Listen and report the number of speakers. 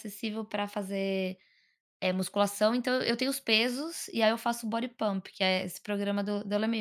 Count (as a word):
one